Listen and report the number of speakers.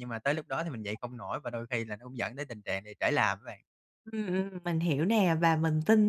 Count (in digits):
2